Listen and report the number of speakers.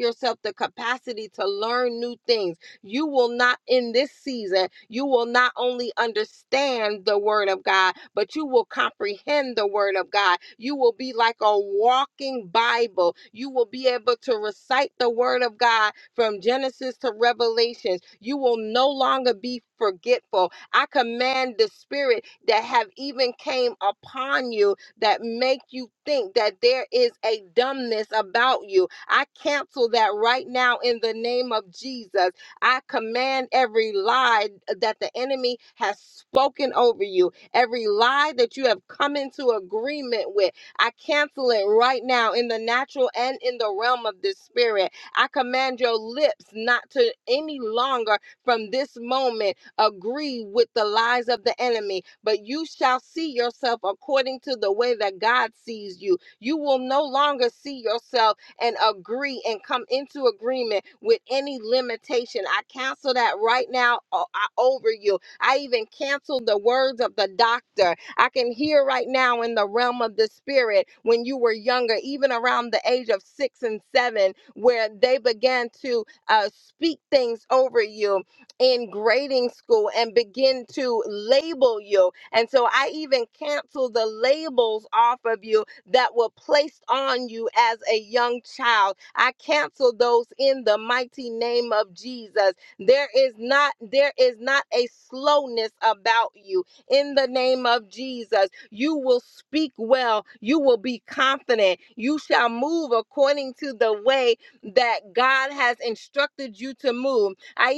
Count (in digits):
1